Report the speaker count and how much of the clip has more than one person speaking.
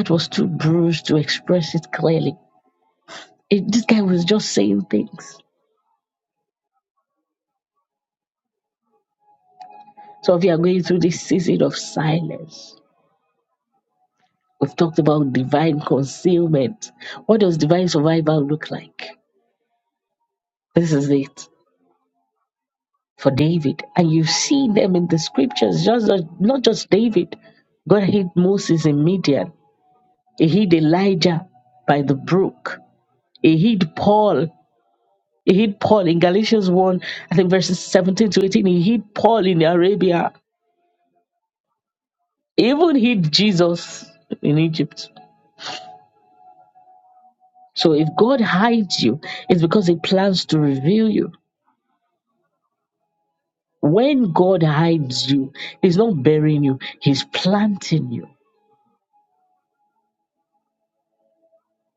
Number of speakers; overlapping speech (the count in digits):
1, no overlap